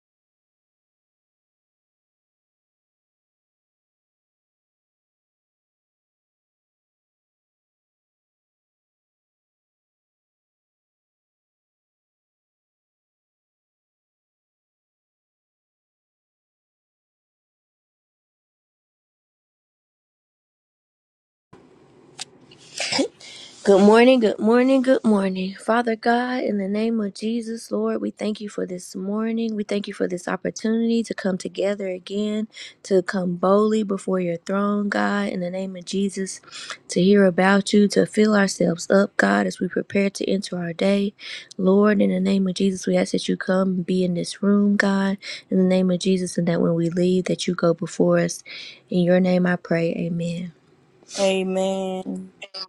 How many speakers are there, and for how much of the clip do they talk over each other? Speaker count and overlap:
2, no overlap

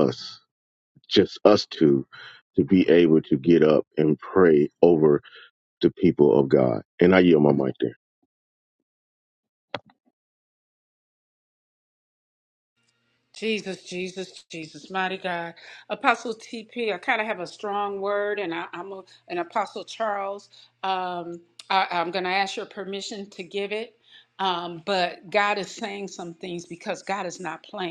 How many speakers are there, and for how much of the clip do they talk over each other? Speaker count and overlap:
2, no overlap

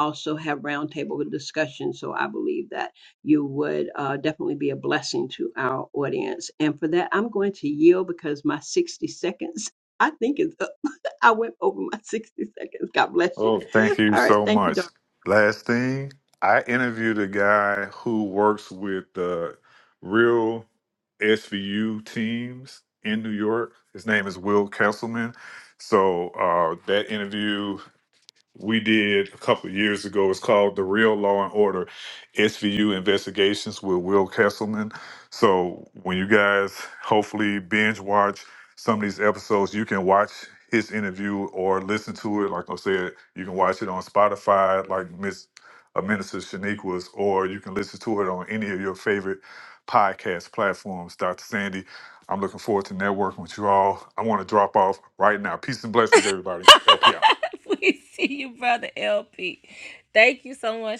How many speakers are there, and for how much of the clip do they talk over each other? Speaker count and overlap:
3, about 1%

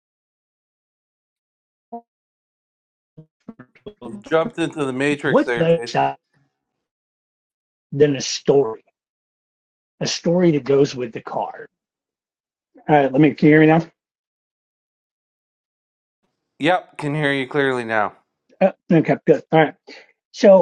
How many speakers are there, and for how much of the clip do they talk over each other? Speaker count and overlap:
2, about 4%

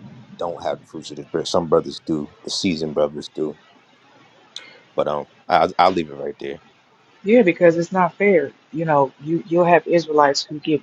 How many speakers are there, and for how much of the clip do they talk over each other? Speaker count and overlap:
2, no overlap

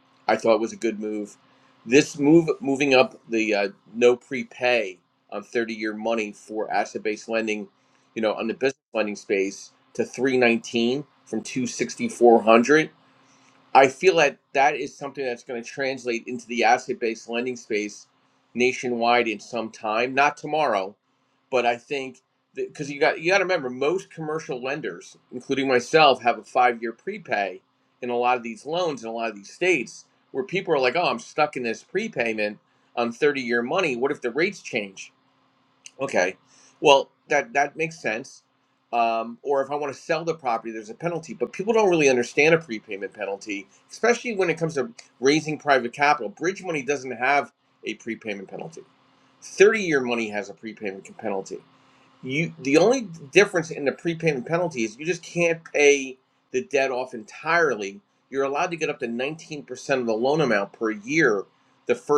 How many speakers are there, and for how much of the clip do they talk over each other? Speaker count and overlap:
1, no overlap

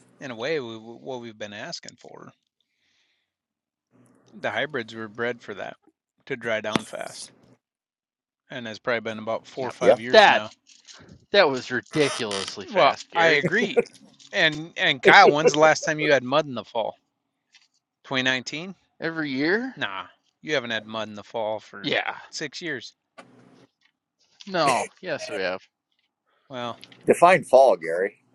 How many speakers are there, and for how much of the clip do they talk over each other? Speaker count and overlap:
3, about 6%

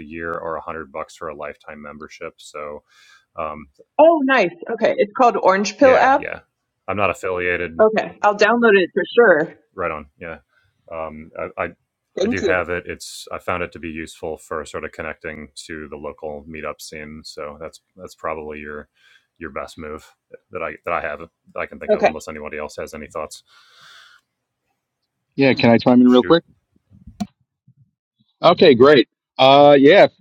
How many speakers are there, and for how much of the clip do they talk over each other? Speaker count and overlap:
3, about 5%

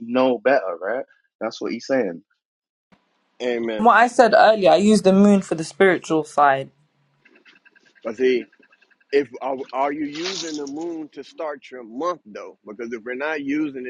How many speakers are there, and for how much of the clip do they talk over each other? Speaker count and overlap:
3, under 1%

